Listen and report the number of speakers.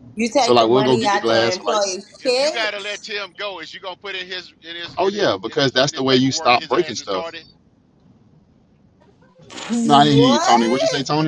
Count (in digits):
3